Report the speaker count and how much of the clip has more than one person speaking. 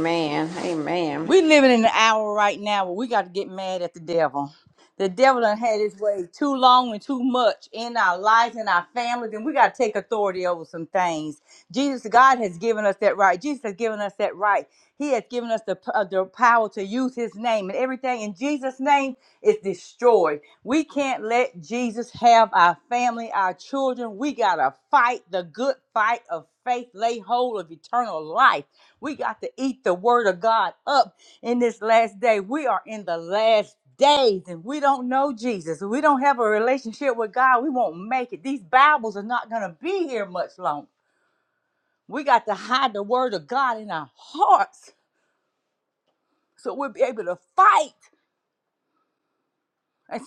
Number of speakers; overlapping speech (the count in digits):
2, under 1%